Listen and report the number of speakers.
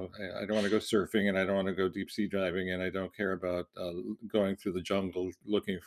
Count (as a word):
one